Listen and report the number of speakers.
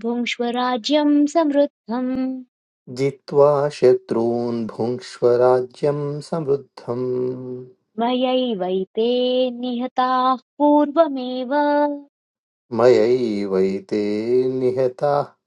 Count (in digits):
2